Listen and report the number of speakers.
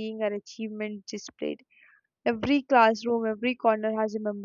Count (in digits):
1